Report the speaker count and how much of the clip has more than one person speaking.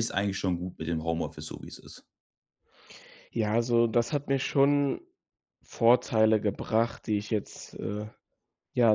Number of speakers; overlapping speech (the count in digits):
2, no overlap